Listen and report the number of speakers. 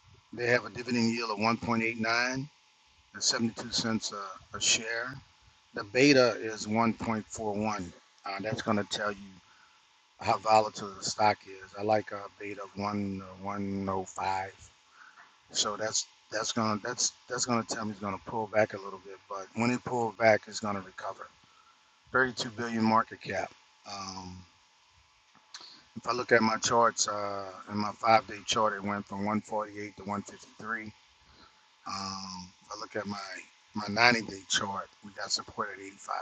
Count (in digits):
1